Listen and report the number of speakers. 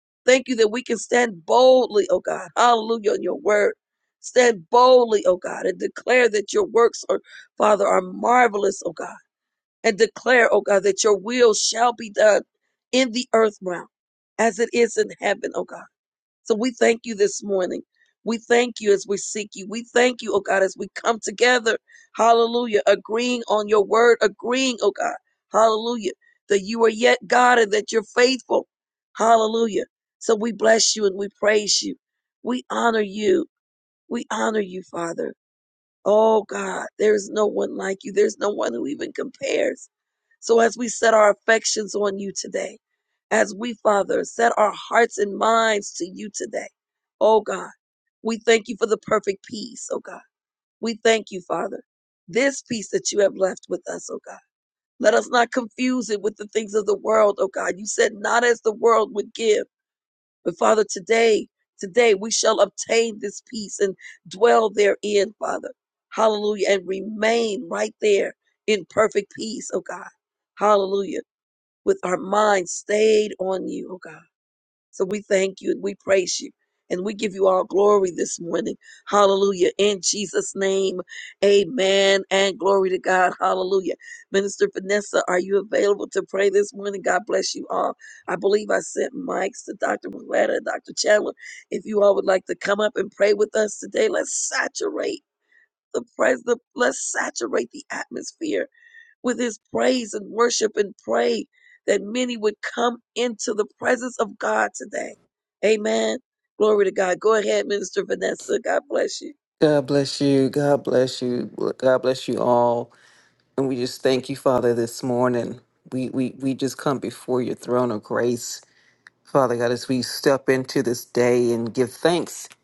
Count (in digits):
2